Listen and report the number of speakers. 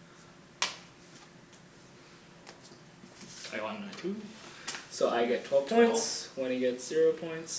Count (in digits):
1